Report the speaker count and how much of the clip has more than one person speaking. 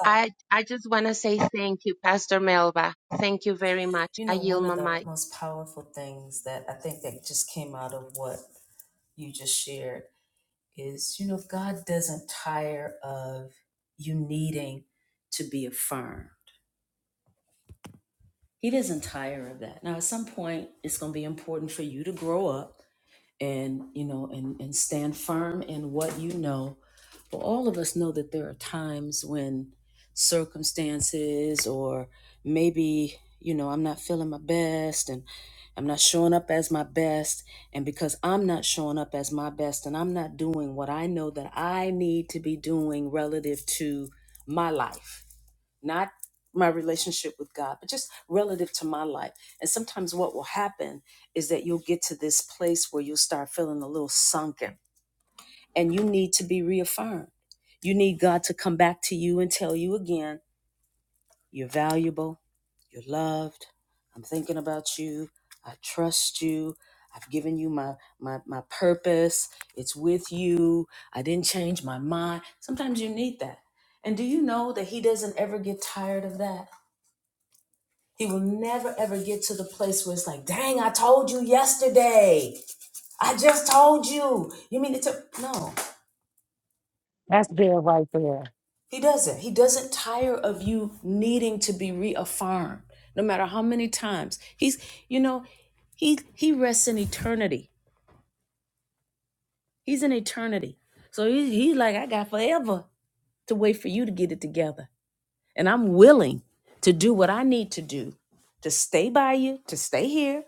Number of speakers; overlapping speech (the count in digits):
3, about 1%